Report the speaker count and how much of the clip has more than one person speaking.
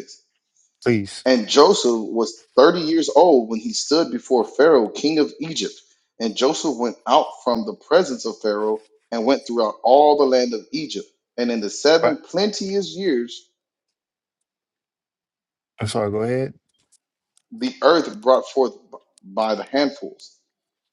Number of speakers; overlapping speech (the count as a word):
two, about 1%